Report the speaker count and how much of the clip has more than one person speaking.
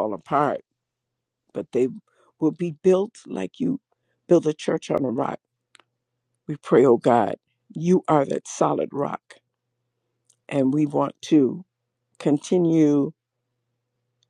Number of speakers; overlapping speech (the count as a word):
one, no overlap